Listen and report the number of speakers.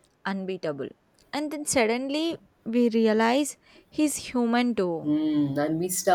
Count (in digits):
2